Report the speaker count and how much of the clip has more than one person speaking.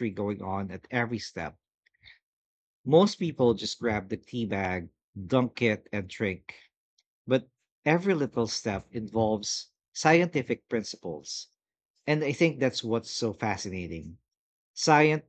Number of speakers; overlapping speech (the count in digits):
1, no overlap